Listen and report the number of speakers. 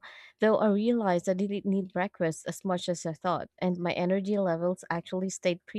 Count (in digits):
1